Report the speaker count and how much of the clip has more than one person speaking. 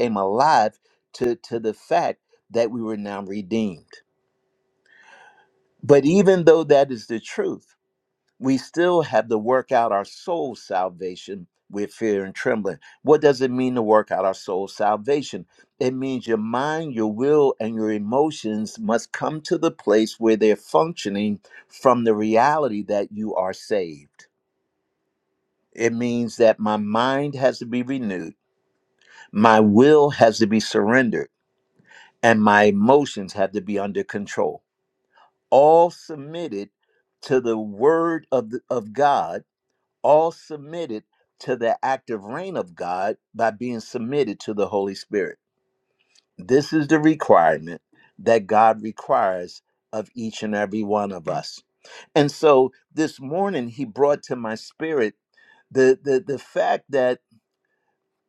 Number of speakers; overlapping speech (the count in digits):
1, no overlap